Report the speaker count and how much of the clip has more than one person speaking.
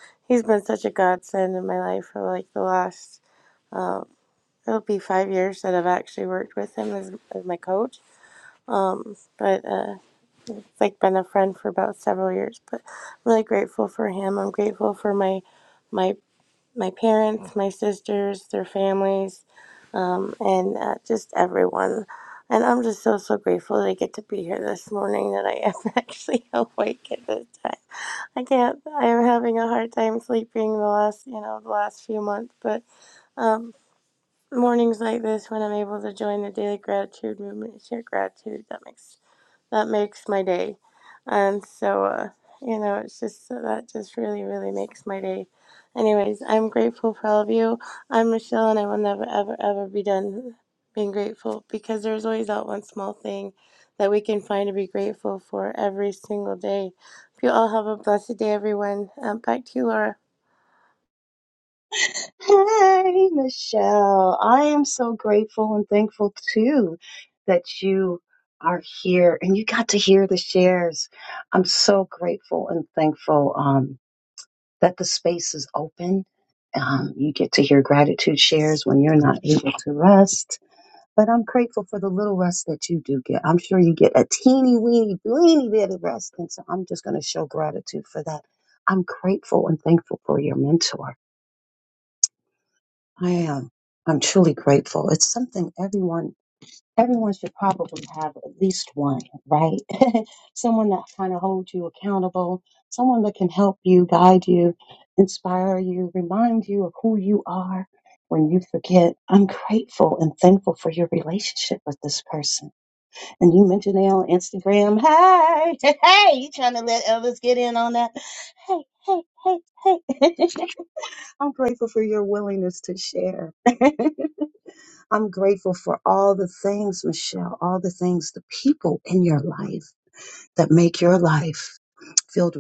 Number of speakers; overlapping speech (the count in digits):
2, no overlap